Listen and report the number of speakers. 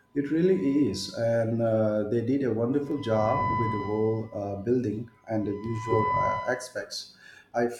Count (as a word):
one